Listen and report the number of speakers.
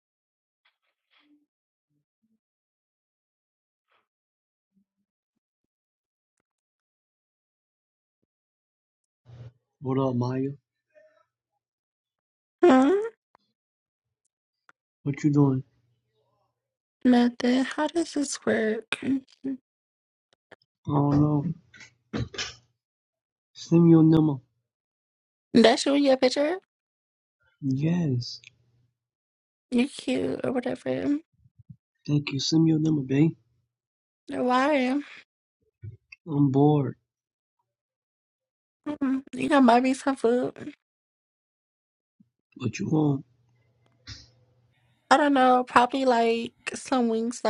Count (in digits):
2